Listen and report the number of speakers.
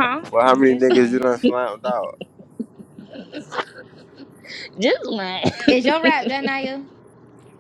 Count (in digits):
3